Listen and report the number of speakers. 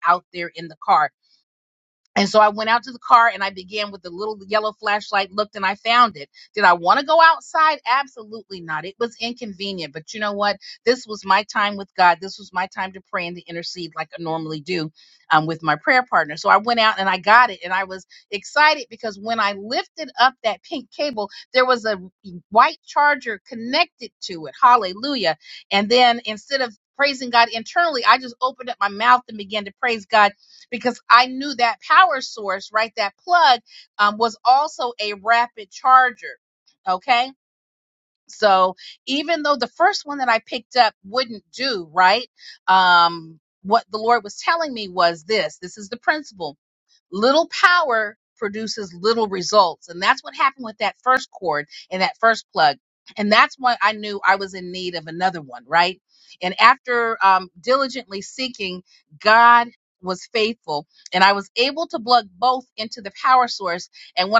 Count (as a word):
one